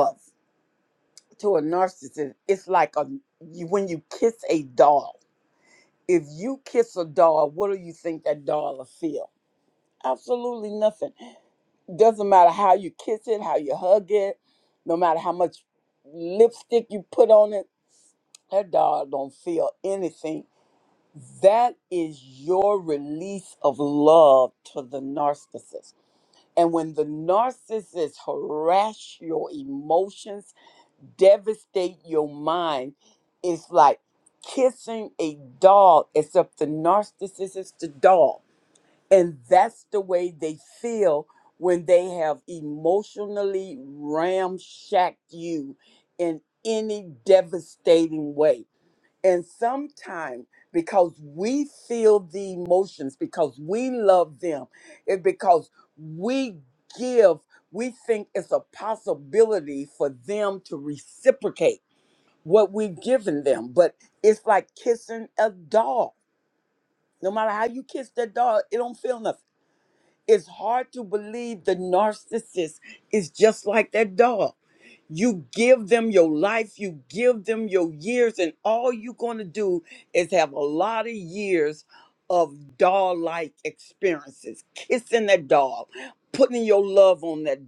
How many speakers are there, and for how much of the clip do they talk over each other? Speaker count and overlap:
one, no overlap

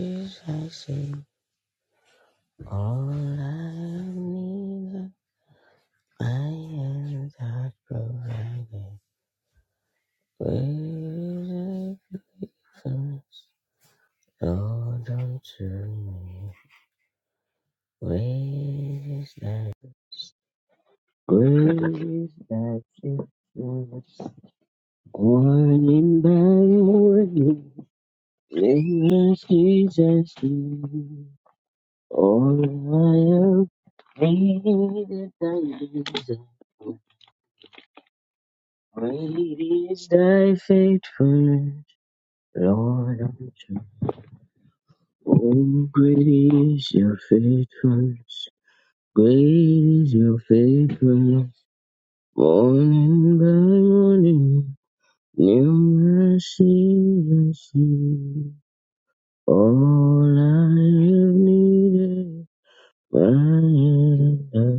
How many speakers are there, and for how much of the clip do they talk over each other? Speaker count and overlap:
one, no overlap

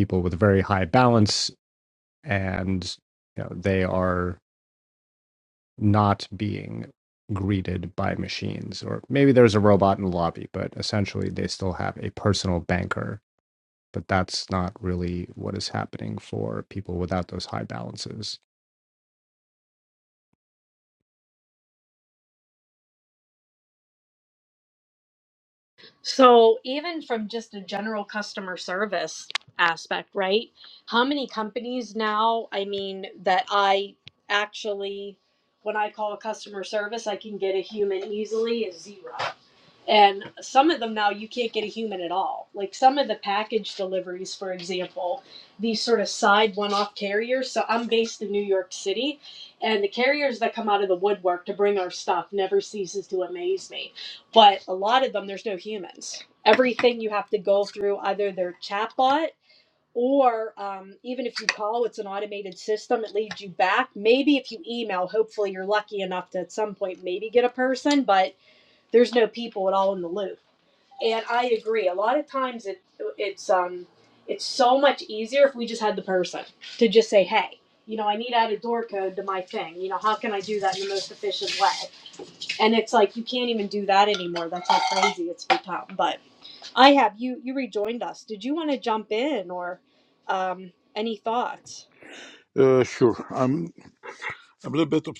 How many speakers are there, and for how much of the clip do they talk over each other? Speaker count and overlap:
three, no overlap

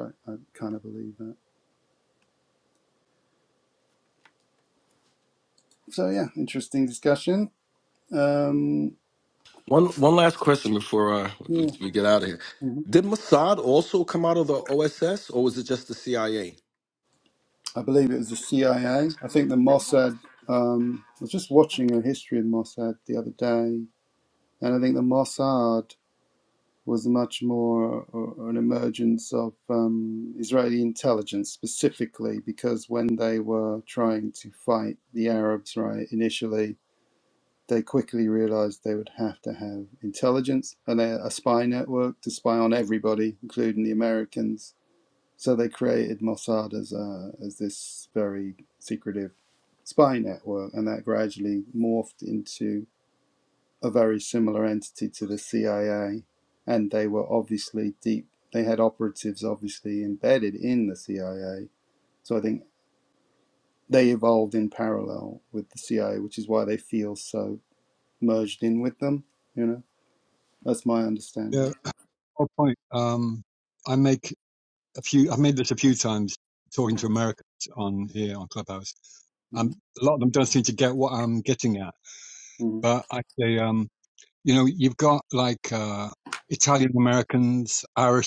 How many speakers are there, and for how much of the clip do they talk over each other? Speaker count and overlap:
three, about 1%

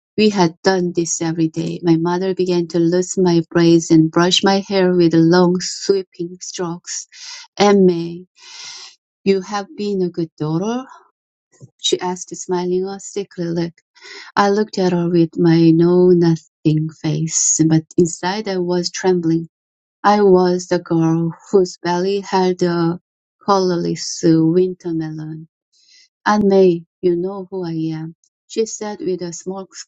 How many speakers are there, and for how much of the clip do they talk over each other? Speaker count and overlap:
one, no overlap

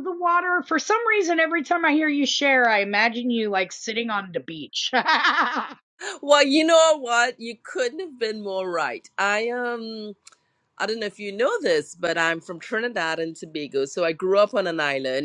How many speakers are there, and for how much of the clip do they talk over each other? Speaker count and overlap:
two, no overlap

